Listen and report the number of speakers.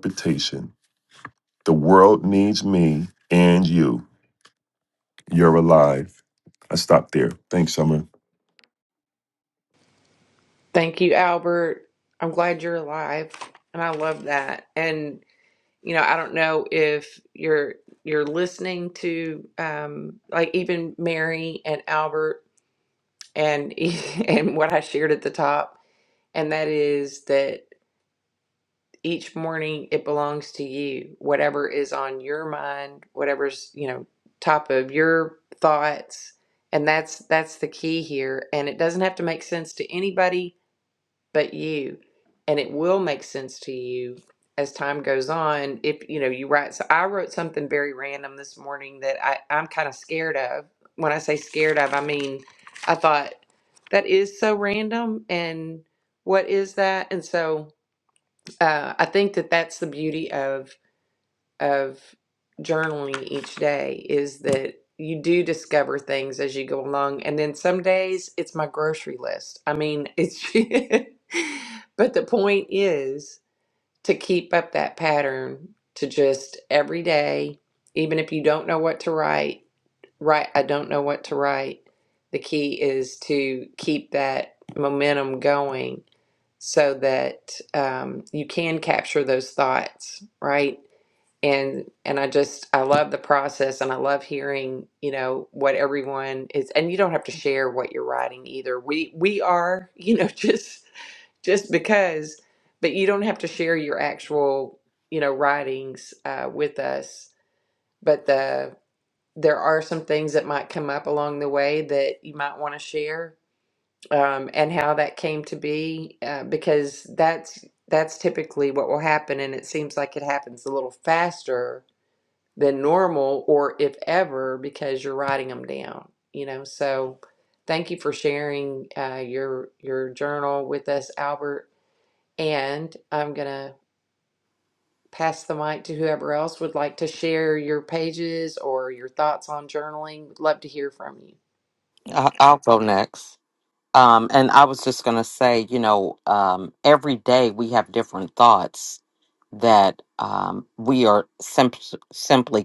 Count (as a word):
three